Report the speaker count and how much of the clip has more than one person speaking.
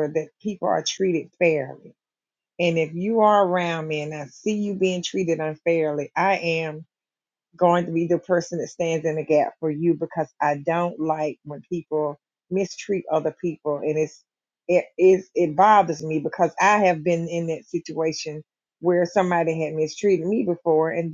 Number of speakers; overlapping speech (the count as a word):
one, no overlap